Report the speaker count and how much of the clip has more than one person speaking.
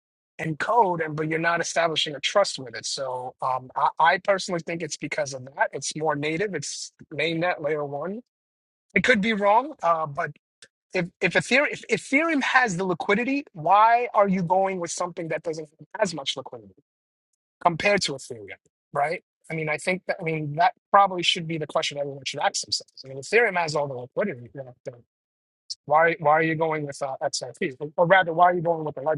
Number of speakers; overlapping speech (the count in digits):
1, no overlap